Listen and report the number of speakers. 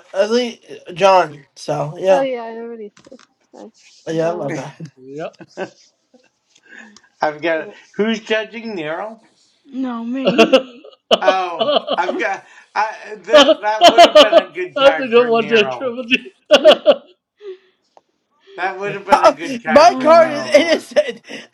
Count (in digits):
5